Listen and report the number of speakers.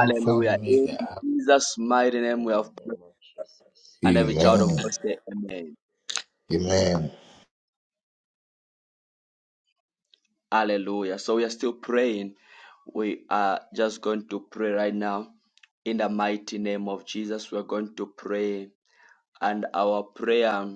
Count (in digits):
3